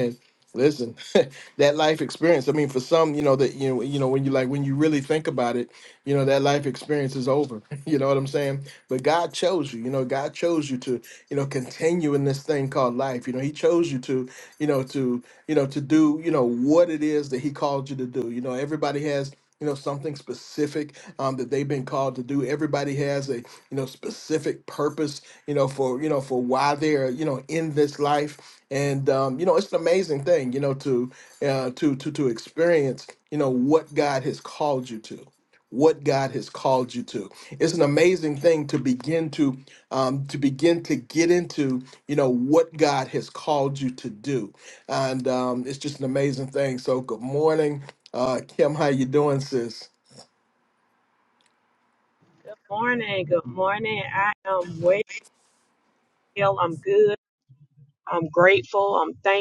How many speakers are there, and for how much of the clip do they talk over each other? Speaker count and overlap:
2, no overlap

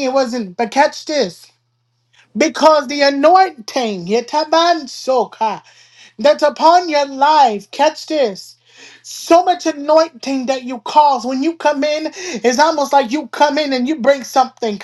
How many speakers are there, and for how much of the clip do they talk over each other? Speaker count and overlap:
1, no overlap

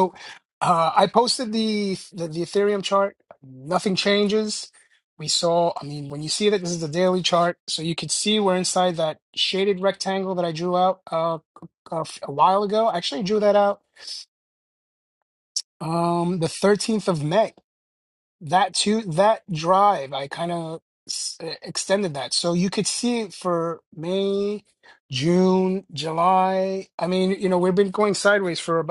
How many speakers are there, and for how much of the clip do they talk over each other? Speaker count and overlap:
1, no overlap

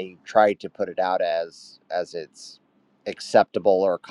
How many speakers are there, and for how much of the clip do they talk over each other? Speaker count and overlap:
1, no overlap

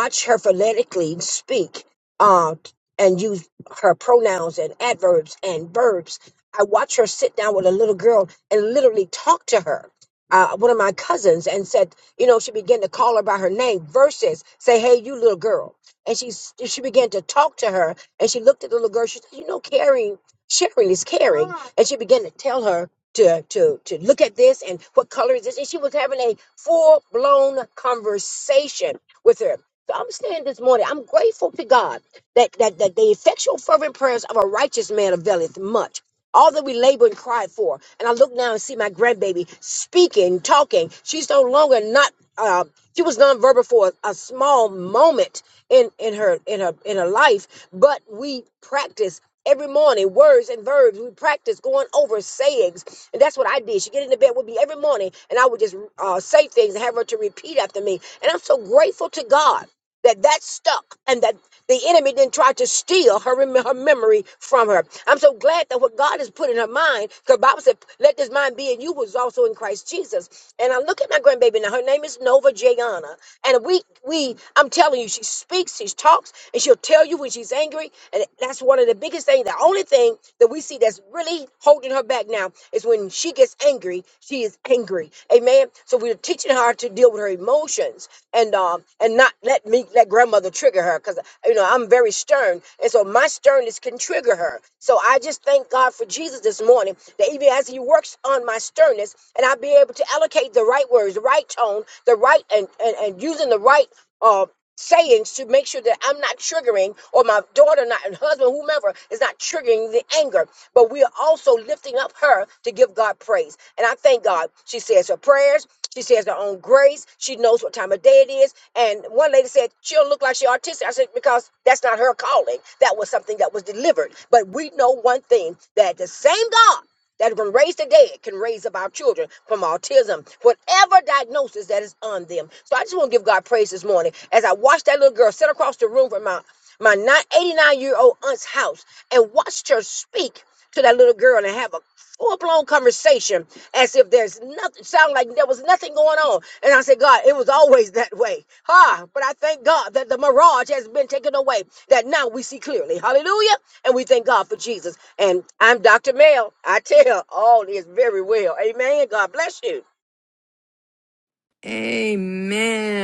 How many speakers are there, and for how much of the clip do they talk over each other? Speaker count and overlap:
2, no overlap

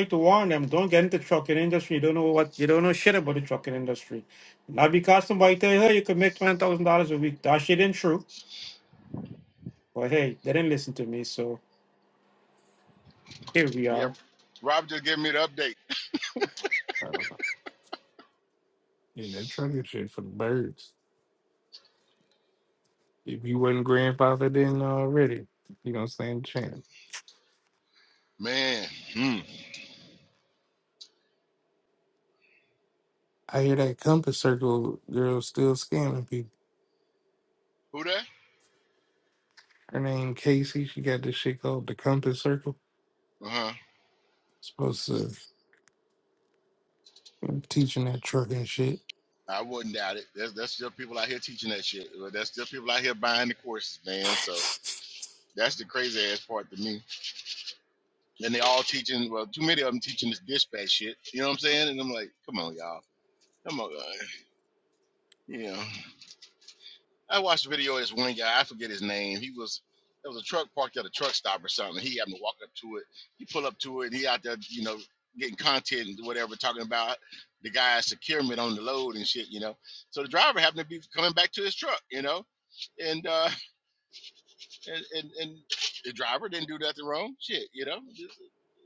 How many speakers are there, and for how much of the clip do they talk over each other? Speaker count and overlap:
3, under 1%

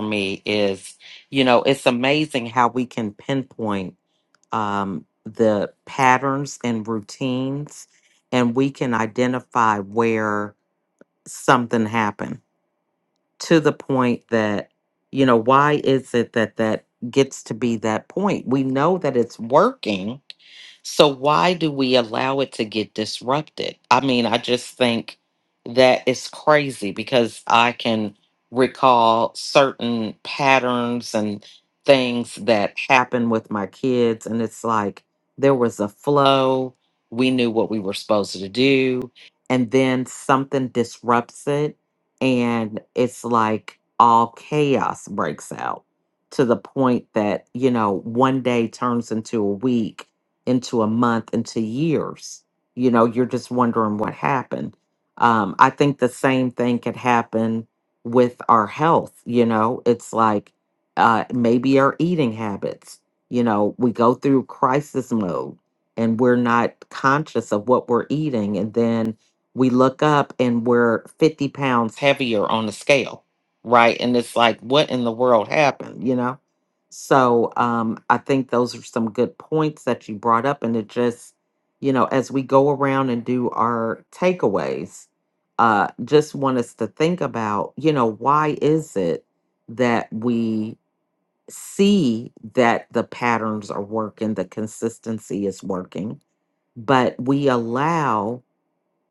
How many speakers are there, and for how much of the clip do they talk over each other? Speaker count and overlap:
1, no overlap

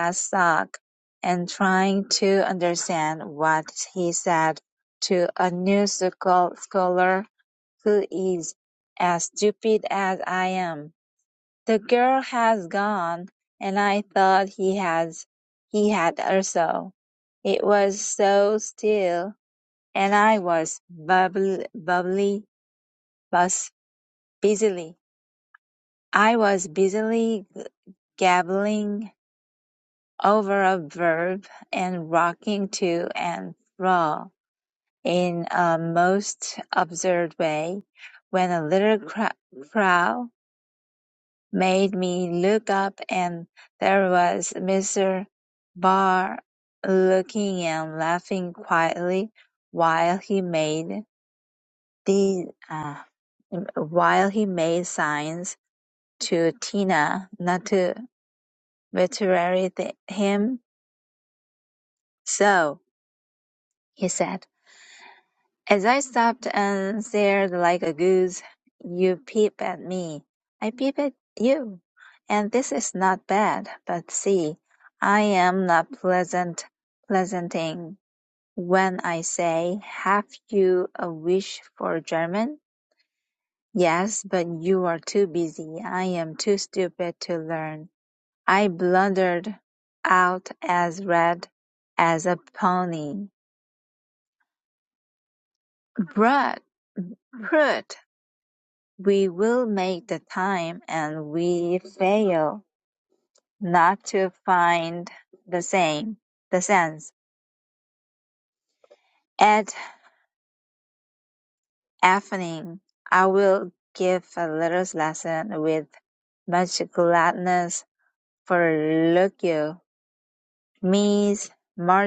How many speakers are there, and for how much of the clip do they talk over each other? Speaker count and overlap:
1, no overlap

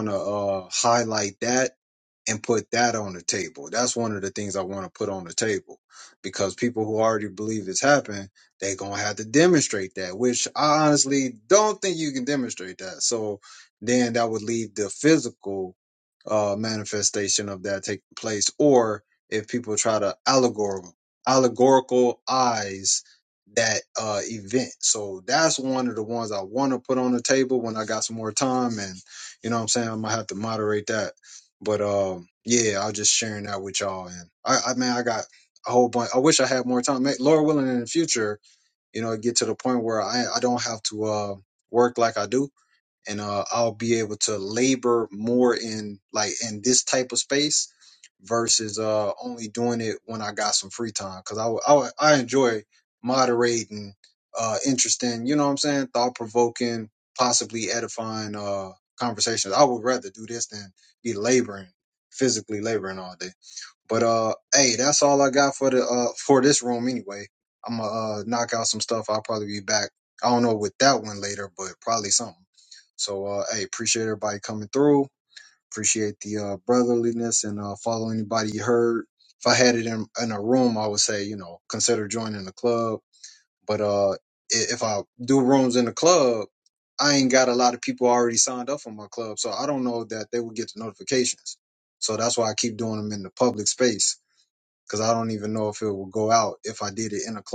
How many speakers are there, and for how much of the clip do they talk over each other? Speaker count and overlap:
1, no overlap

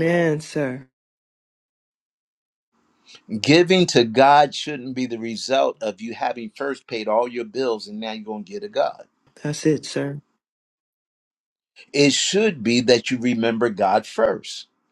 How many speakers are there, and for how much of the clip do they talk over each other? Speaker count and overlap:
2, no overlap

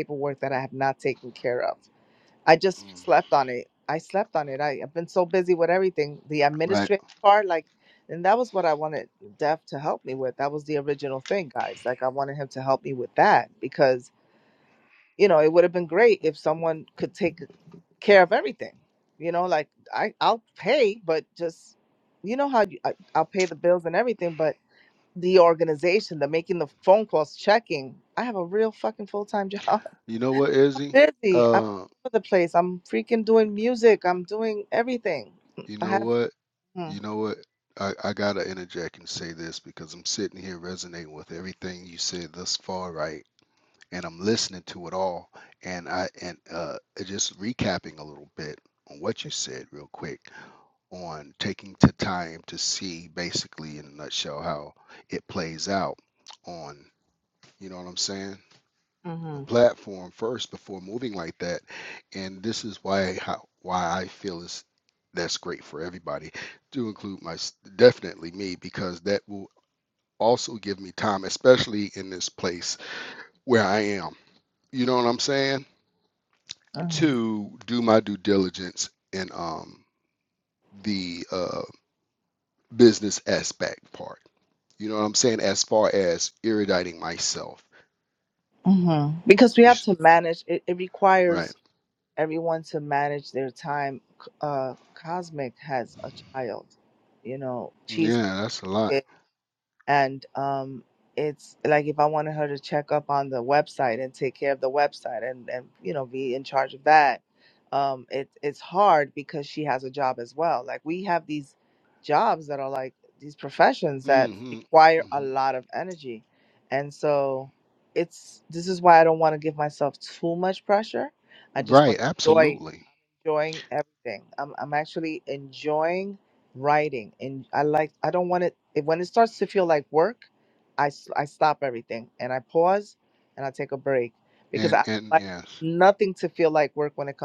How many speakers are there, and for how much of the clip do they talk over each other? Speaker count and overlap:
2, about 3%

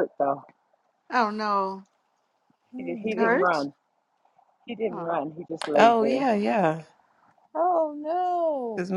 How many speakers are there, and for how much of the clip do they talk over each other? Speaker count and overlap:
4, about 17%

